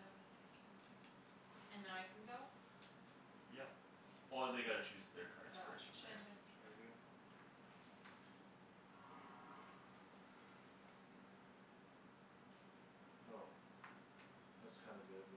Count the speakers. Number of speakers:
3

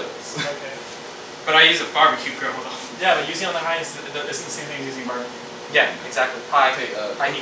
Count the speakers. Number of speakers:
3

